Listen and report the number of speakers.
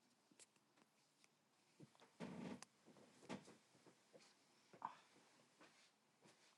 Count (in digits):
0